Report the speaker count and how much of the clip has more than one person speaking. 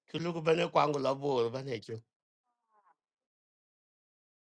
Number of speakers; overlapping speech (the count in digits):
1, no overlap